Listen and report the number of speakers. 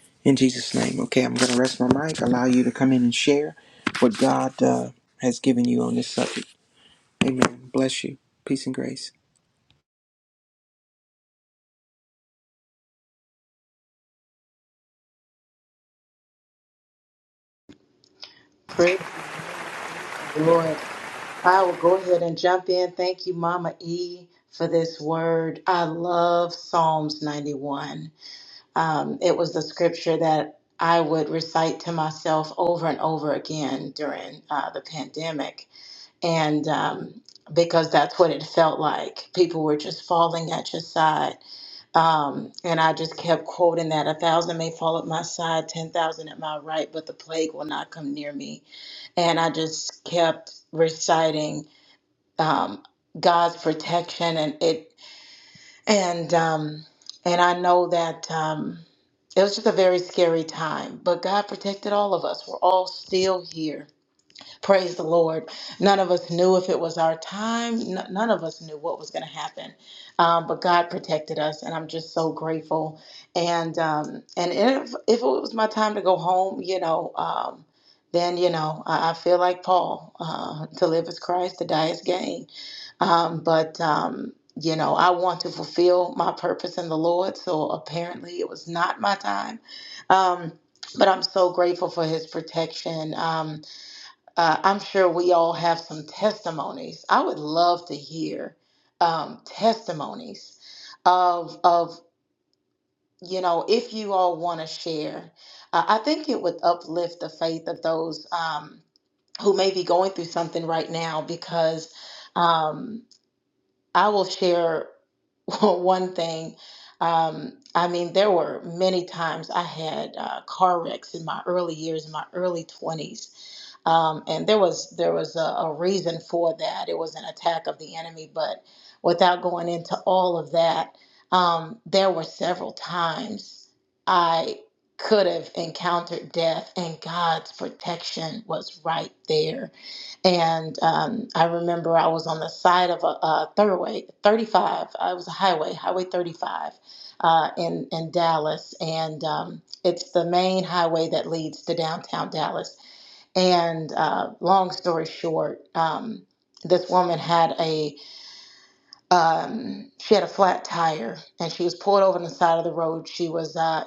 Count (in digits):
2